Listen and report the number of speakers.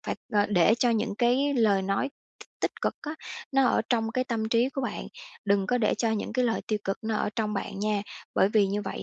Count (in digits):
1